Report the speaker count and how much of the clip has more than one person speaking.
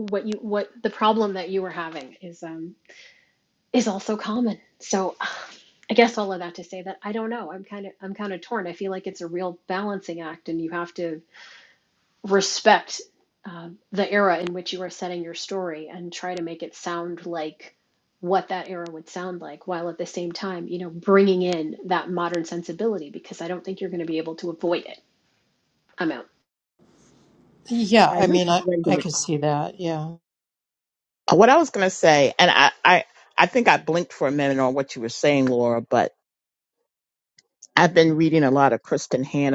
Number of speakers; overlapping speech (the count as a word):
three, about 2%